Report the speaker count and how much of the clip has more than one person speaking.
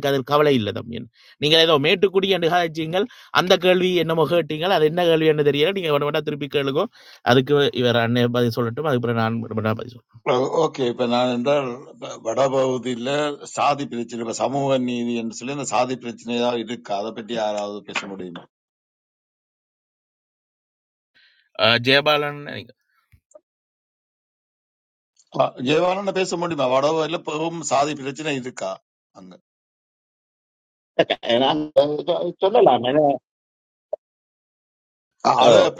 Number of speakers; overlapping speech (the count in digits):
3, about 1%